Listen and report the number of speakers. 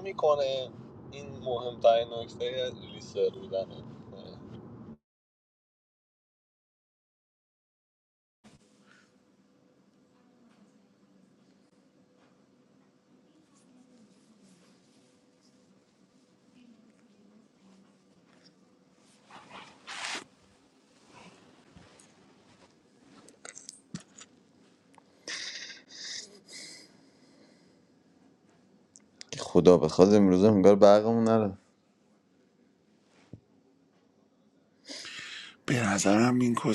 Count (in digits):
3